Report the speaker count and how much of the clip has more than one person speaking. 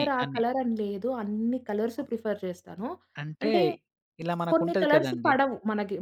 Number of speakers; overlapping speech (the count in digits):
2, about 26%